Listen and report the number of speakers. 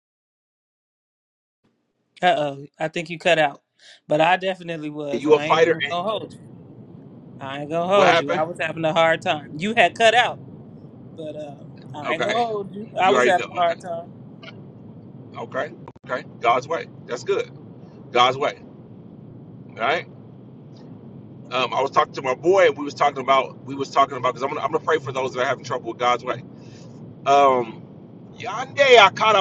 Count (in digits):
2